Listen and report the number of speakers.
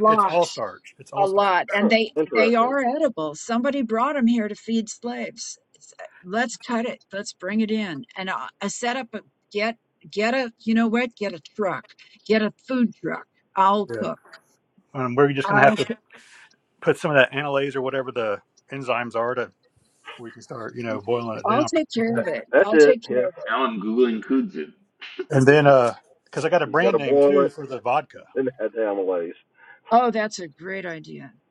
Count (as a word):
four